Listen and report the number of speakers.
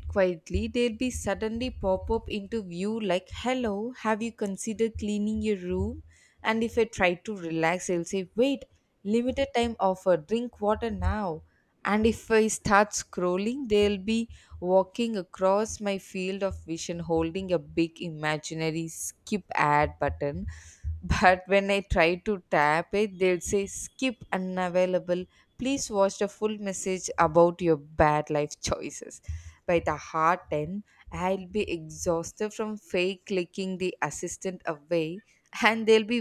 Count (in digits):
1